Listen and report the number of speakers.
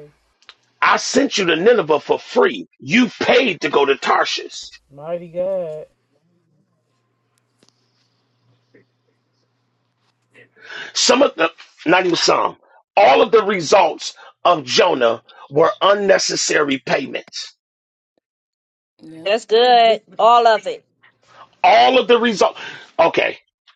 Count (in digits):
3